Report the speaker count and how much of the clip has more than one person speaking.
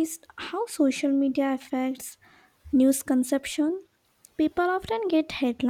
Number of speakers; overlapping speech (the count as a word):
one, no overlap